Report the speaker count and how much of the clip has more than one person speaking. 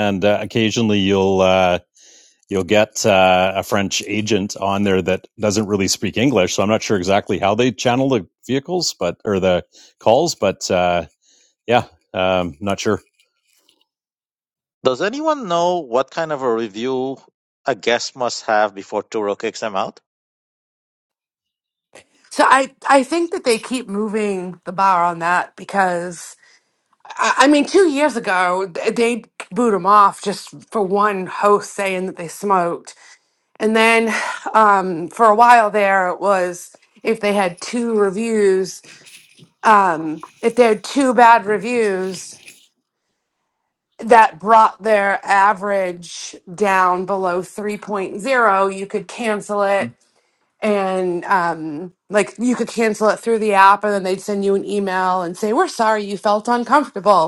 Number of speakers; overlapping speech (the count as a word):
three, no overlap